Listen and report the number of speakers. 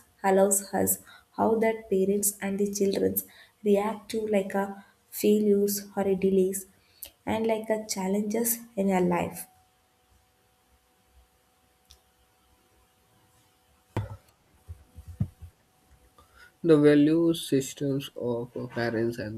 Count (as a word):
two